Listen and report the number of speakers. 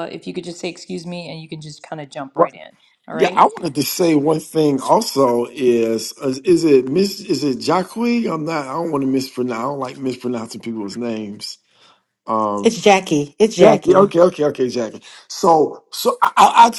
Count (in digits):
3